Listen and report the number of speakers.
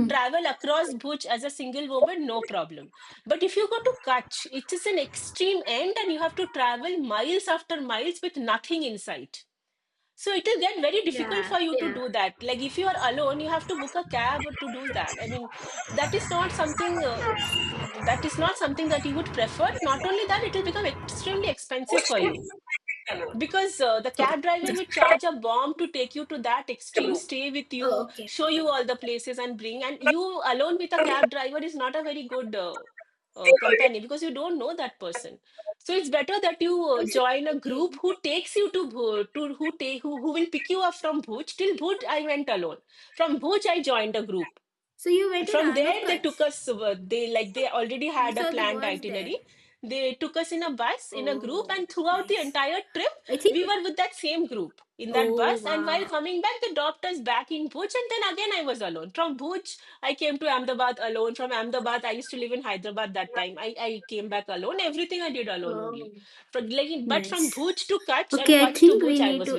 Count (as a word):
two